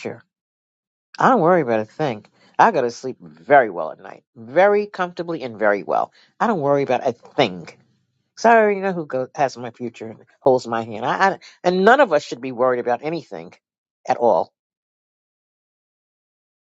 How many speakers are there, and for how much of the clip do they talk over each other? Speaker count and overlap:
one, no overlap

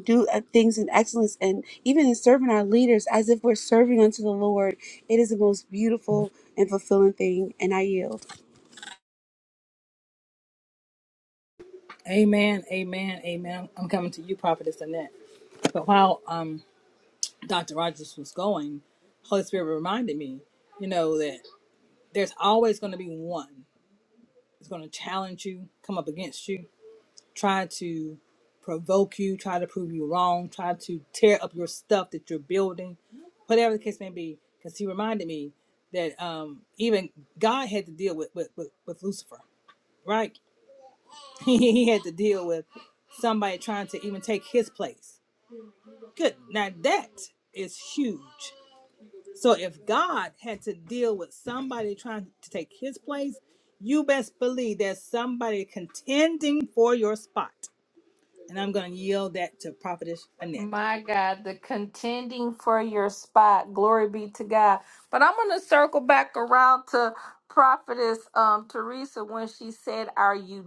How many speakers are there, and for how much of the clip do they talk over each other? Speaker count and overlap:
three, under 1%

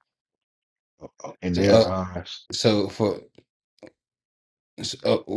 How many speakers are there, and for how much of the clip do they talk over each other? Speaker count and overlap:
two, about 7%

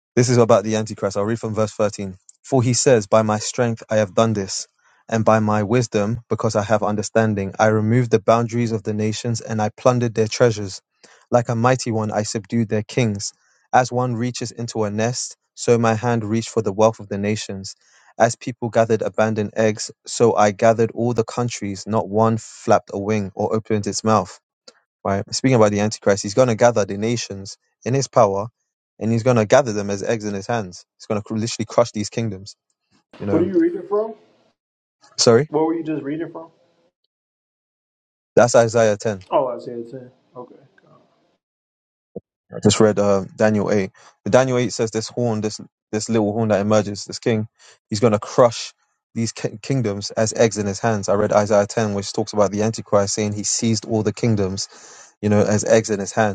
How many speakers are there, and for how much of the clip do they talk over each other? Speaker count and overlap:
two, under 1%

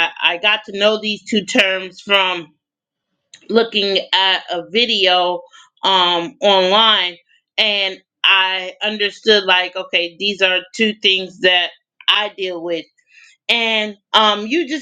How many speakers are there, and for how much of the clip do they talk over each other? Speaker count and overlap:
one, no overlap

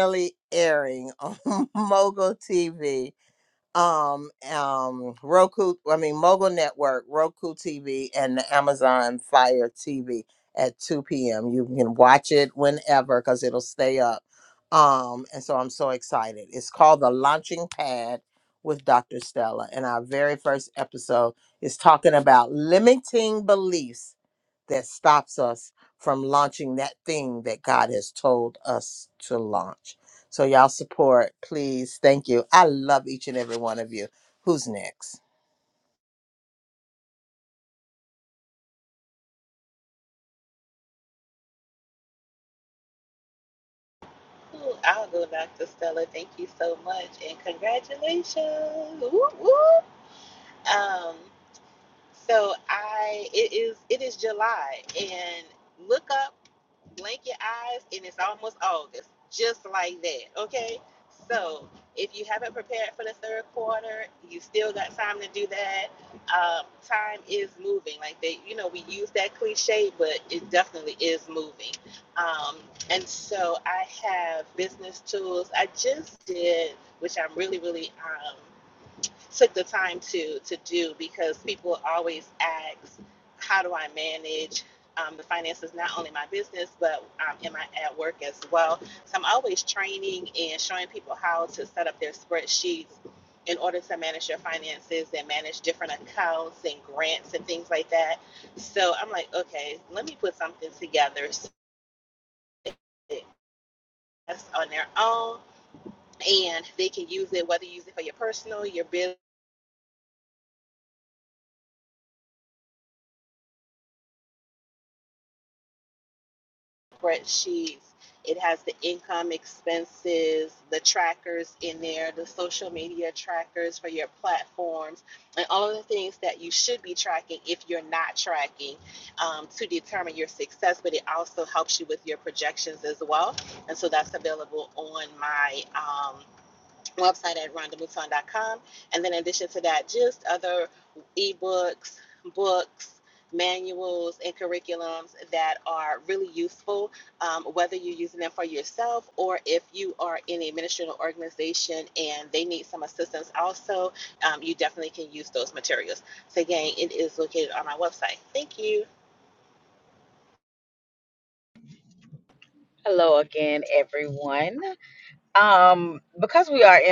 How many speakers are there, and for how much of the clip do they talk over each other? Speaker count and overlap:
three, no overlap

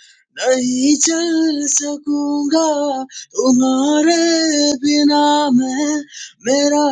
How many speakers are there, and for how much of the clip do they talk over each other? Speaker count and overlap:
one, no overlap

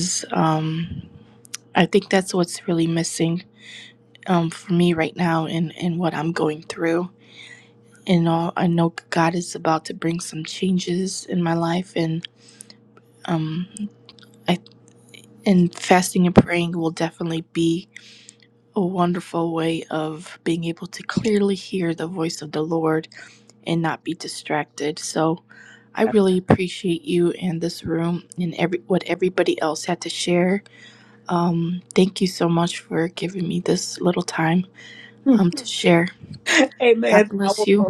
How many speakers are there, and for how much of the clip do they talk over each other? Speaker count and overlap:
two, about 3%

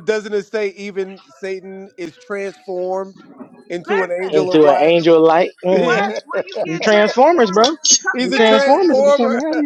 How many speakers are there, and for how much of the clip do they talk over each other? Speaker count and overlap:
three, about 40%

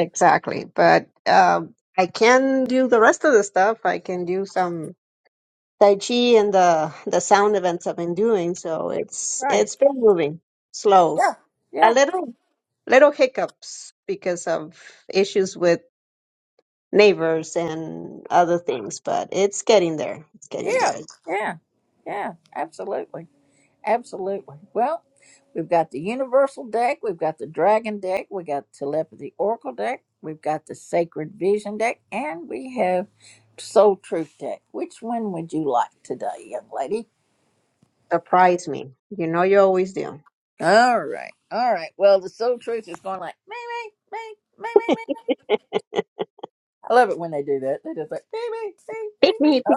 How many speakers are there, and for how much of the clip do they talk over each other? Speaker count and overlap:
two, about 3%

